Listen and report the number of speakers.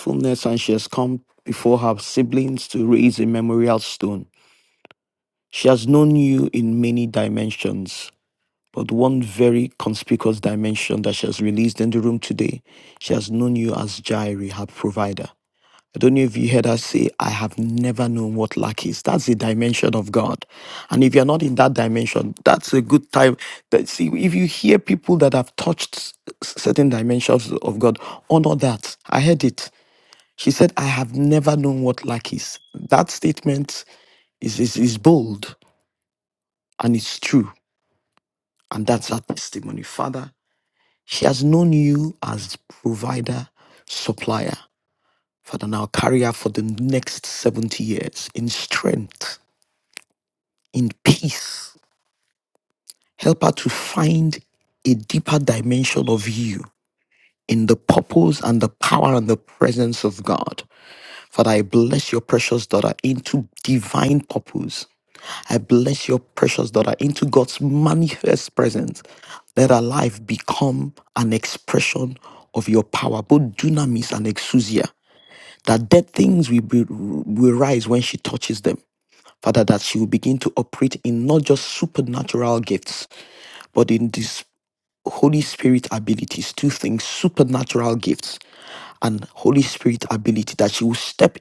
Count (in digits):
1